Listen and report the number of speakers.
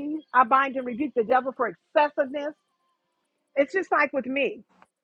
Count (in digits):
1